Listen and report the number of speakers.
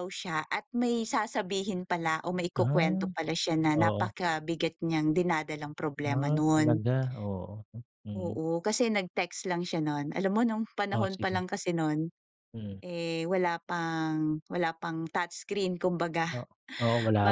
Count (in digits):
2